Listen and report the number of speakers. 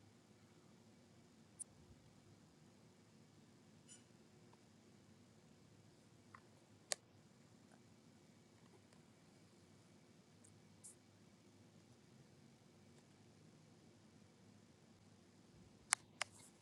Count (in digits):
0